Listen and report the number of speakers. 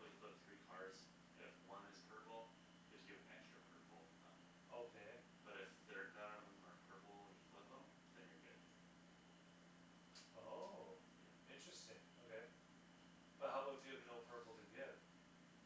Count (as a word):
two